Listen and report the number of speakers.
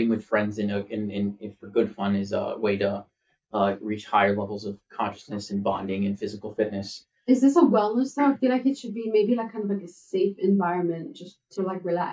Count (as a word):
two